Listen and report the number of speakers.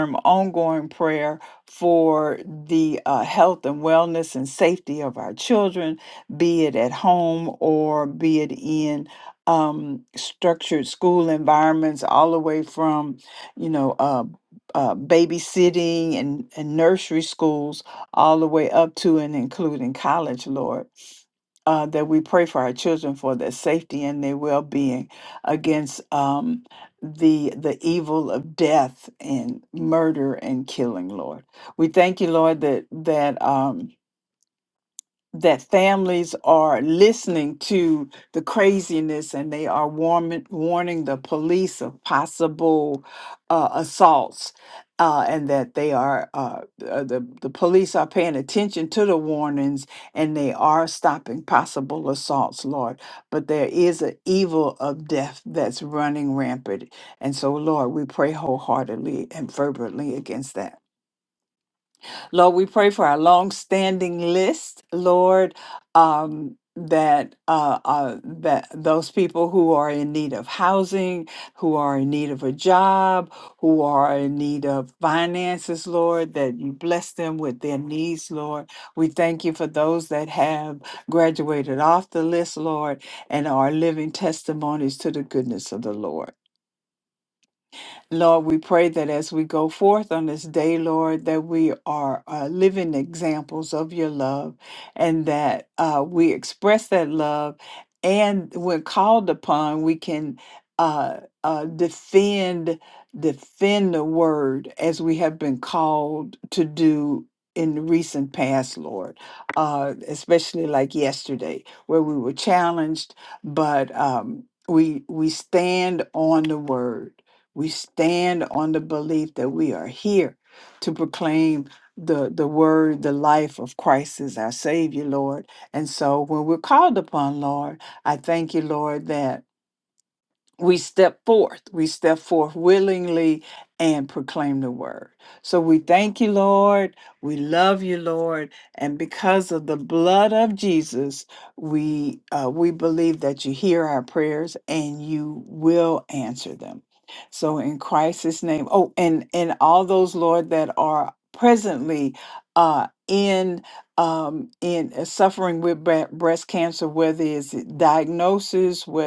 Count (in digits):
1